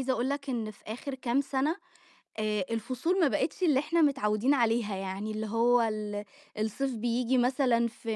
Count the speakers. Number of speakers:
one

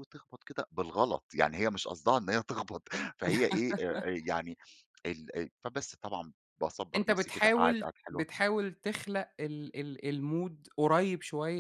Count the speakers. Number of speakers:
two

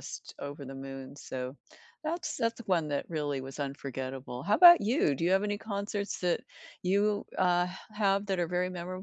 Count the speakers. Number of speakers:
one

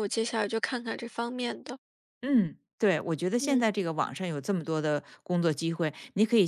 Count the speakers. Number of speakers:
two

